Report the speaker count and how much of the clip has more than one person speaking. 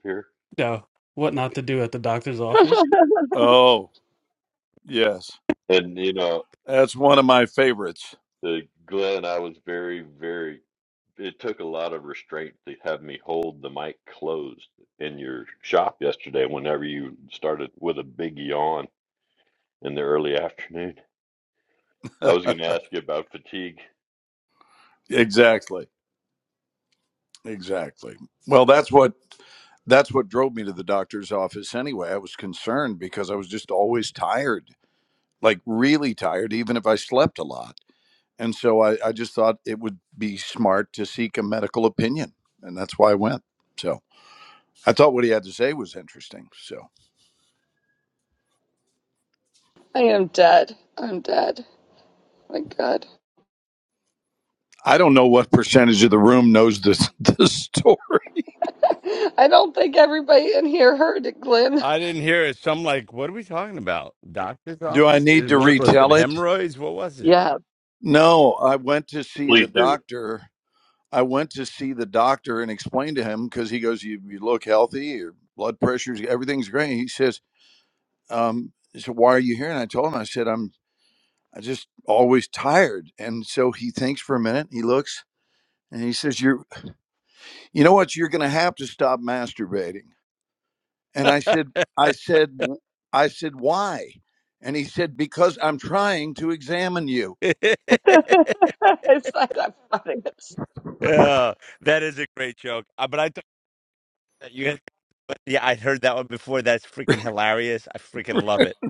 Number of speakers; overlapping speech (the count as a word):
five, about 2%